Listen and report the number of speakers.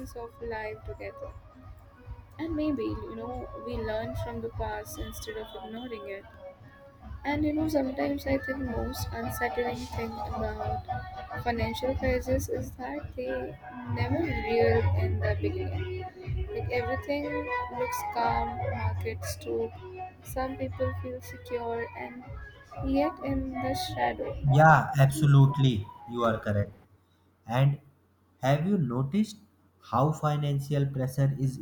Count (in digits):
2